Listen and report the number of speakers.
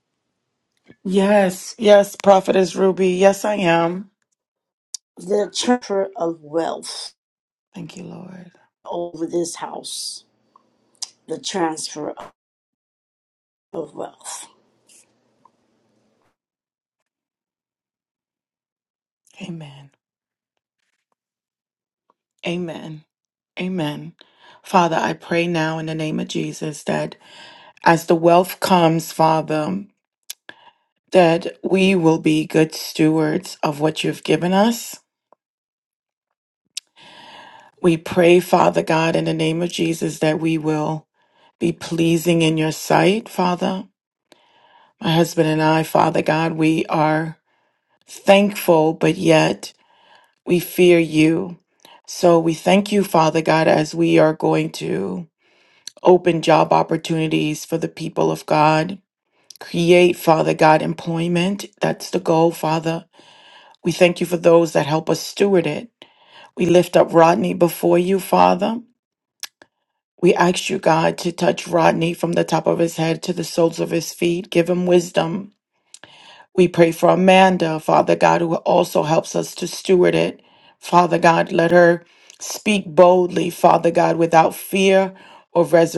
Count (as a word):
two